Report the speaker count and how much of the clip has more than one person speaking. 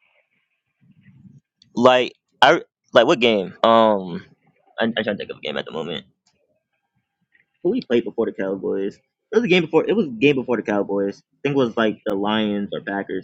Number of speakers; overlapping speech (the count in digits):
1, no overlap